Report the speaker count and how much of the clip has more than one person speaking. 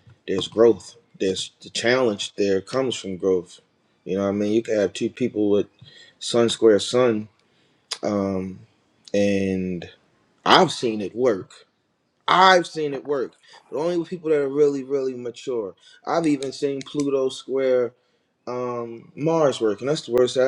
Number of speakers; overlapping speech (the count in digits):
1, no overlap